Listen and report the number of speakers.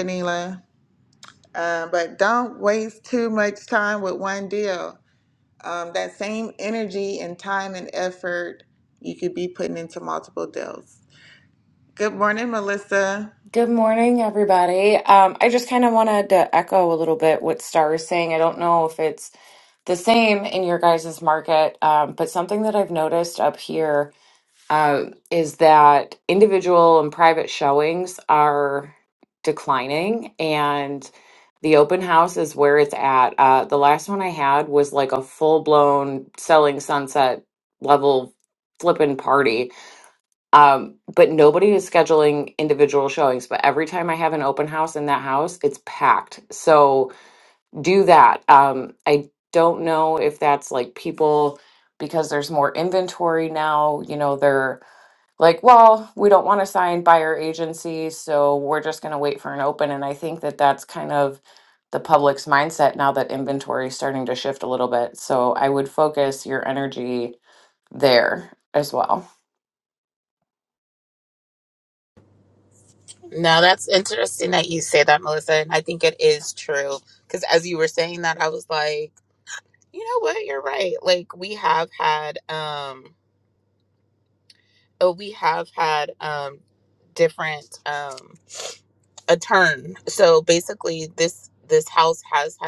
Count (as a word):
three